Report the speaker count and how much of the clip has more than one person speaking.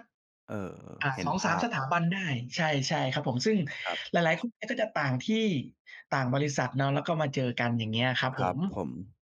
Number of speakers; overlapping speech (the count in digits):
2, about 9%